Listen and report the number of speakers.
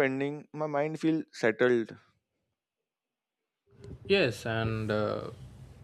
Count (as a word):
two